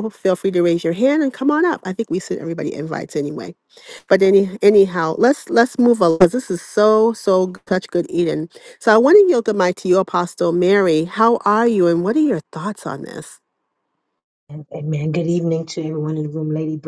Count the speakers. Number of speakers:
two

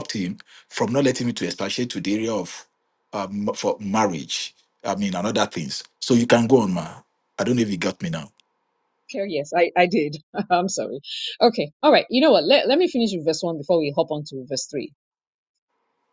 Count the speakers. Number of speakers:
two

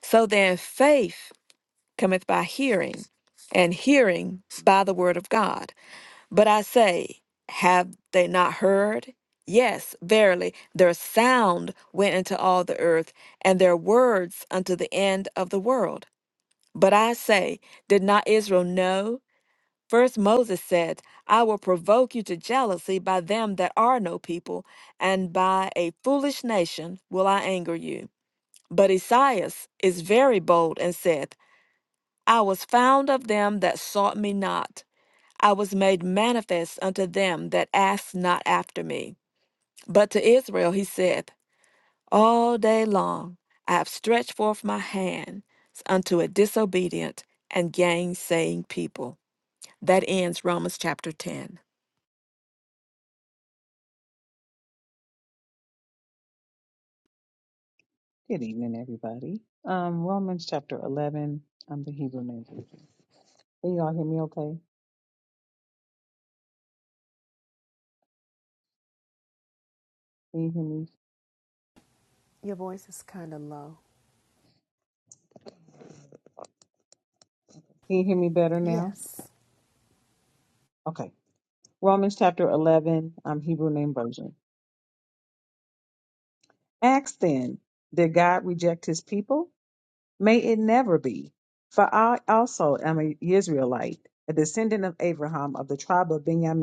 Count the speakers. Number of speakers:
three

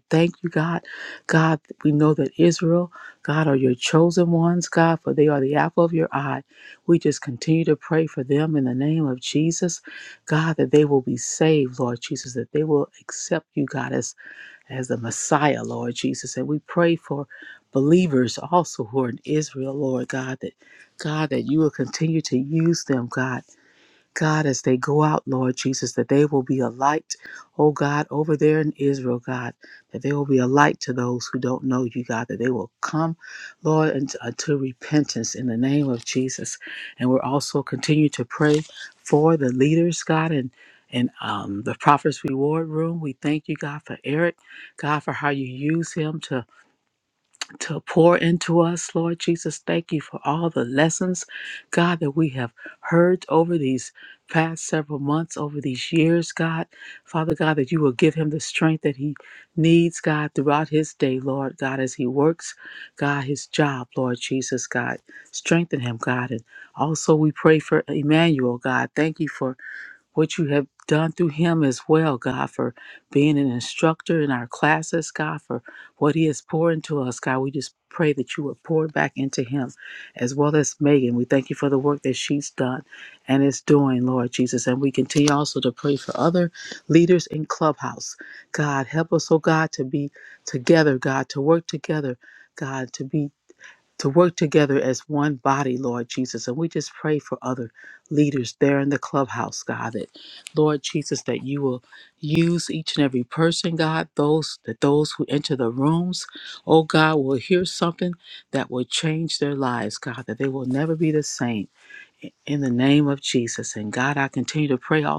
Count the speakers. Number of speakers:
one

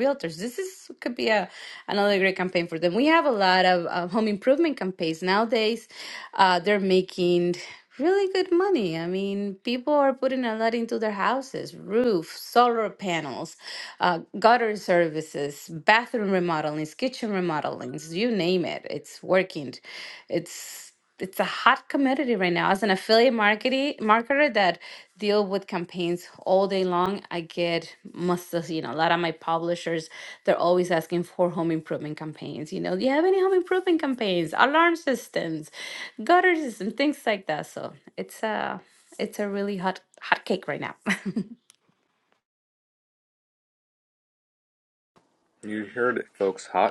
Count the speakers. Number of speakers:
two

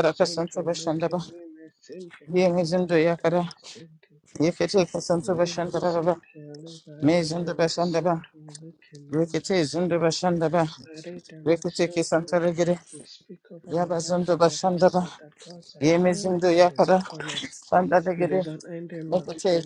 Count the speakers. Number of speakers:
two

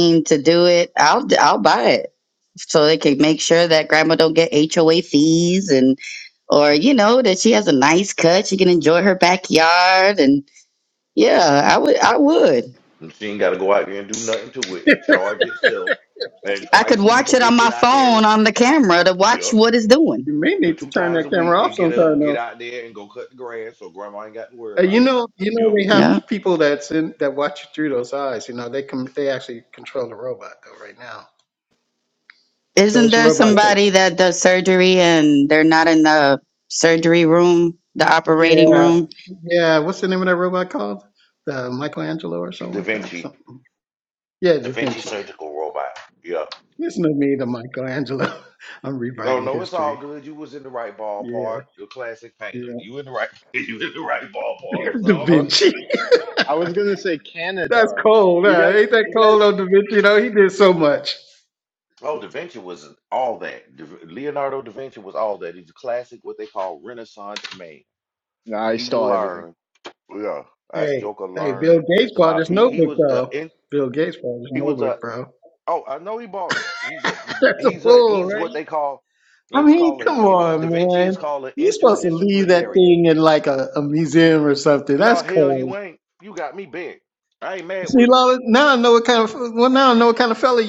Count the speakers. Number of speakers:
four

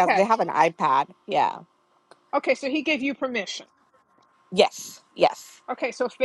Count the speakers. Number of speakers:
two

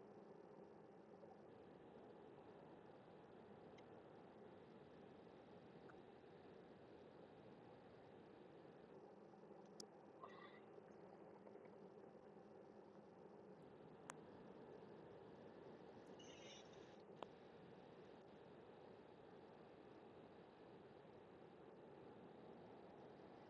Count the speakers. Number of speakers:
zero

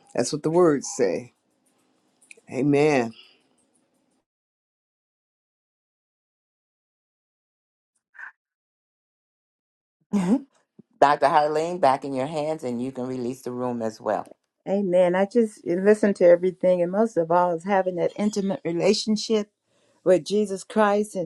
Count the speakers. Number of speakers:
three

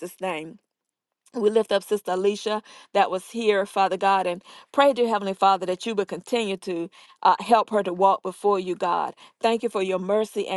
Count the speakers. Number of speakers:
one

